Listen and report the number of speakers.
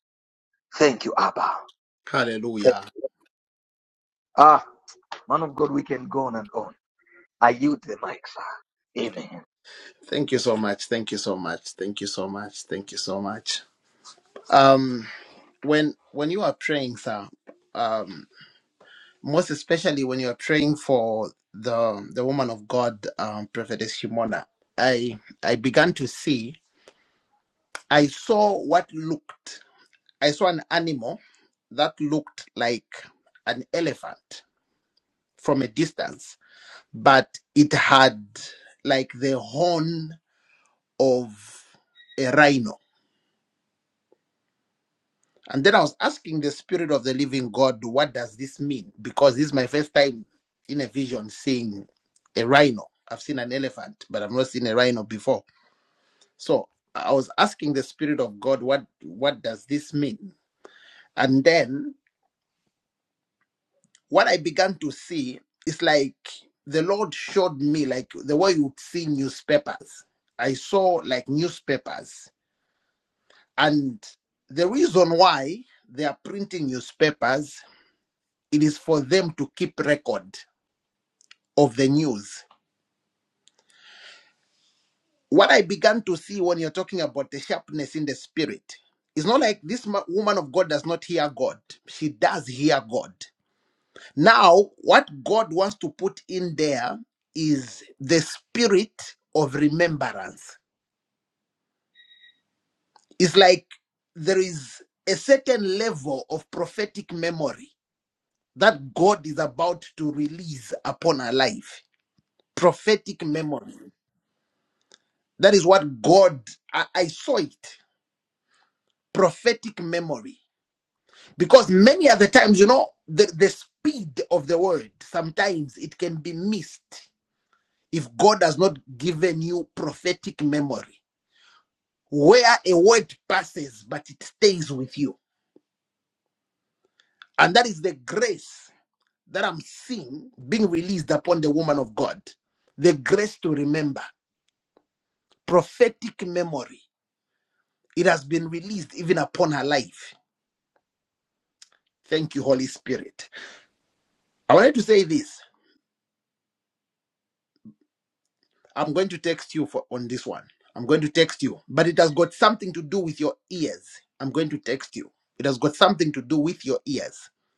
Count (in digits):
2